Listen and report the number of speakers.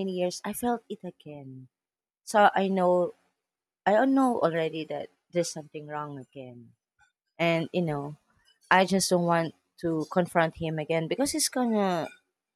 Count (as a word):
one